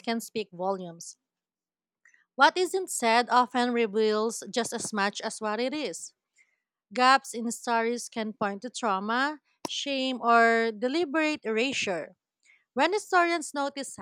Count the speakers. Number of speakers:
one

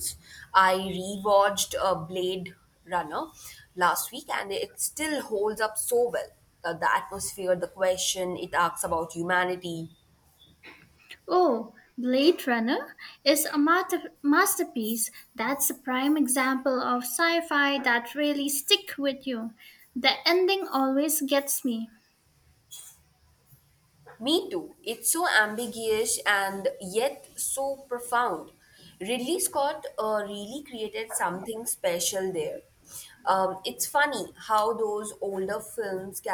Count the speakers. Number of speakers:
two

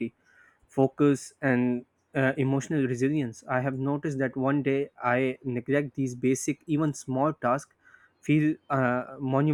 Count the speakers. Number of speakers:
one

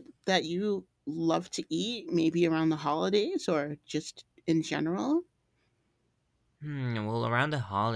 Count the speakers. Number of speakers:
two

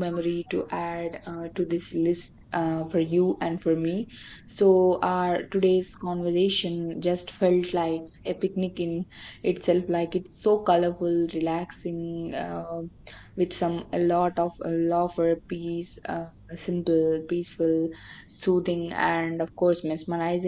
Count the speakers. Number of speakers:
one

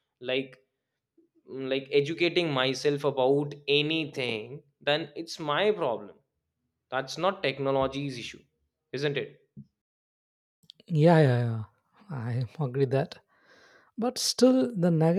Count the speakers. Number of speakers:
two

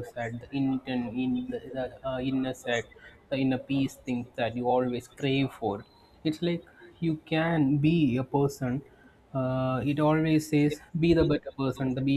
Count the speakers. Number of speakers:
one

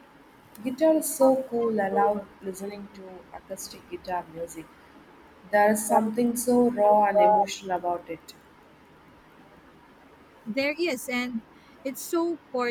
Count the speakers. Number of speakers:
two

